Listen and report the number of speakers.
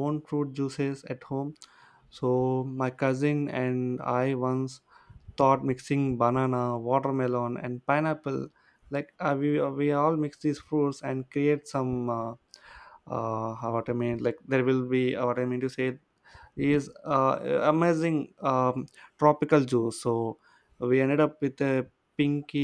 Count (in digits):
1